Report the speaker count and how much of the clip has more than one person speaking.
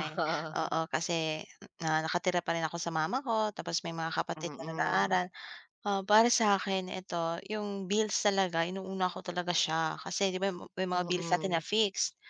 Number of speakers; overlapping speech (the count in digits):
2, about 13%